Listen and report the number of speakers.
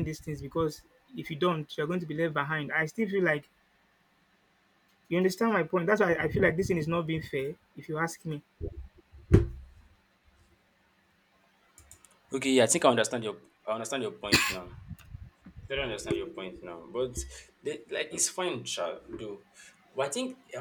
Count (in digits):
2